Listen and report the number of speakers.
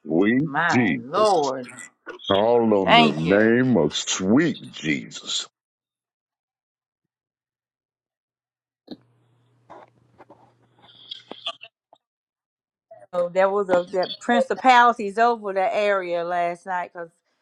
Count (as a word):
two